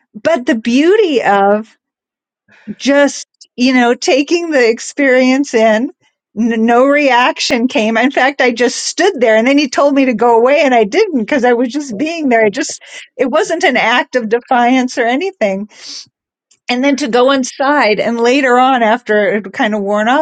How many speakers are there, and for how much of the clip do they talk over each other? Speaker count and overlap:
one, no overlap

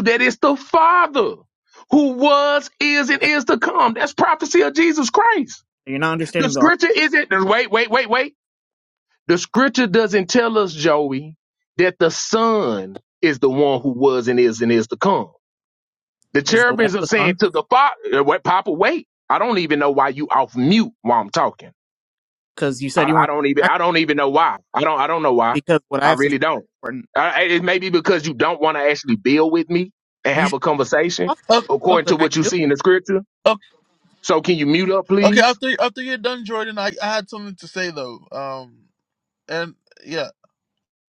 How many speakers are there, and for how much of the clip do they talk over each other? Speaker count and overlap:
three, about 8%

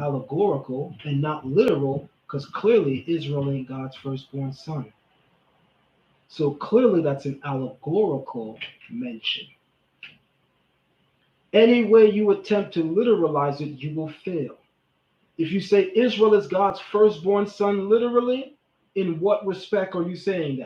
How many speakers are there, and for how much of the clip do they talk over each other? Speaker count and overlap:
one, no overlap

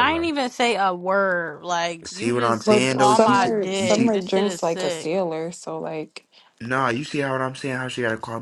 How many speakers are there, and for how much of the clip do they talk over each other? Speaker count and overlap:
three, about 38%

